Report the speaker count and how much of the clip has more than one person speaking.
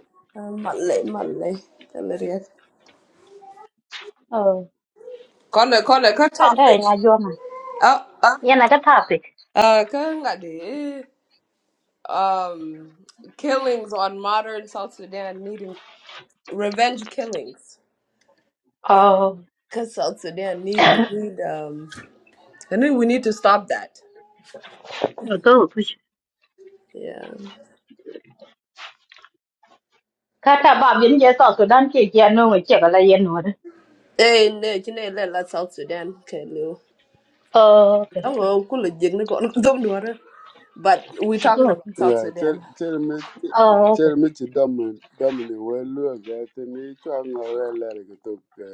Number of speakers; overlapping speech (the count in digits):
3, about 3%